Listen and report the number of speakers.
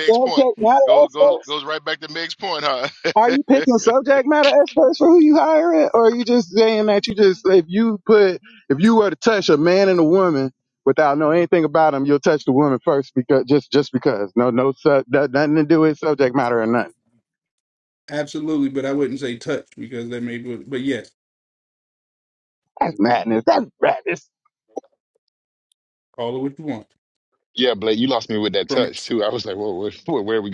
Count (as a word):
four